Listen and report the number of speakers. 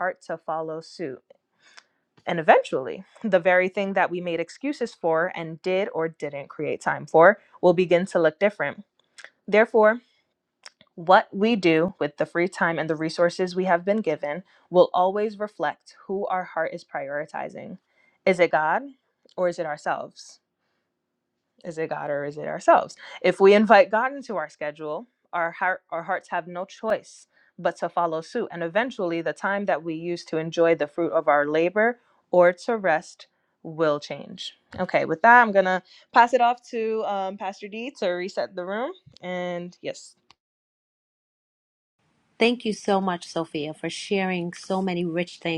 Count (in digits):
2